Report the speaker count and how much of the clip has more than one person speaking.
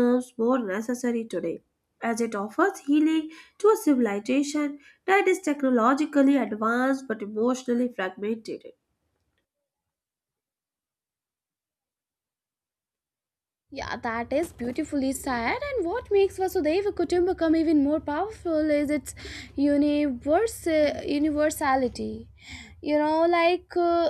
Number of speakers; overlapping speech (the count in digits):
2, no overlap